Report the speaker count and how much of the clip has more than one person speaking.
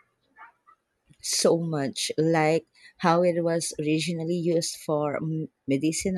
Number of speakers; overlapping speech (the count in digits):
1, no overlap